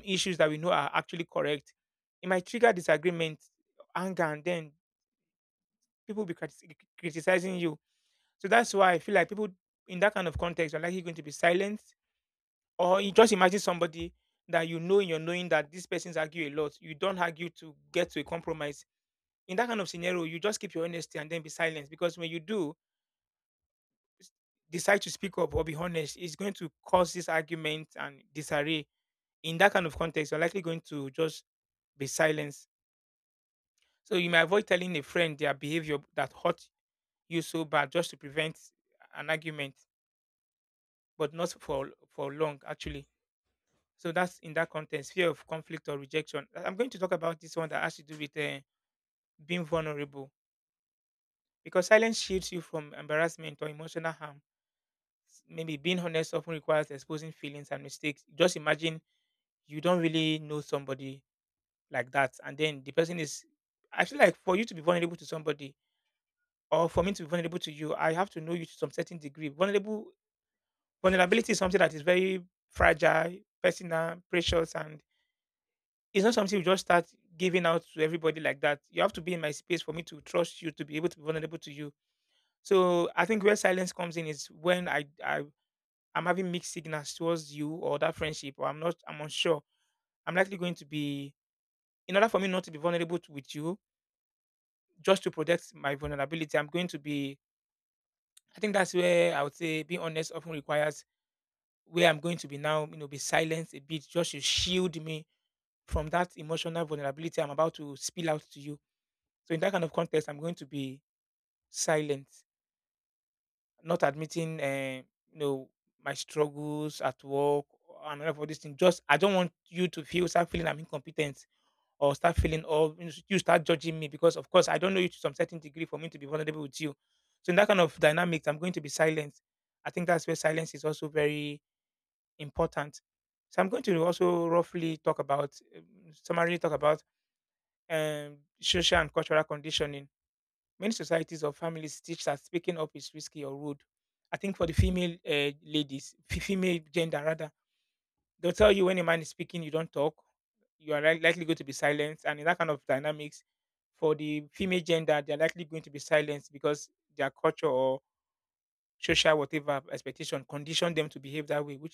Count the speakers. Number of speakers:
1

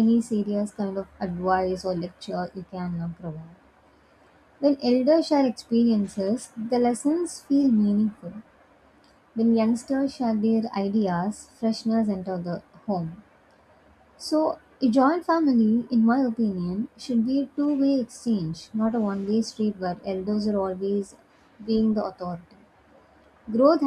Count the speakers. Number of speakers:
1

